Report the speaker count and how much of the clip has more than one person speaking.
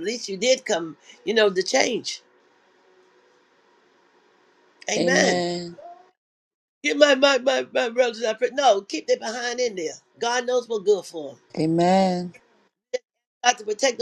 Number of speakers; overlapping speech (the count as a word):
two, about 3%